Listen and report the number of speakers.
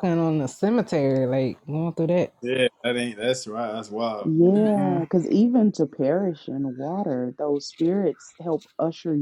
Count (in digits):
3